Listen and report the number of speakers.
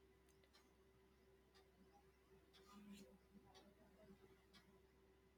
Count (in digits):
0